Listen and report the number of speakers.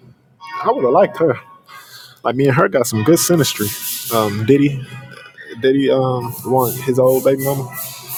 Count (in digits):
1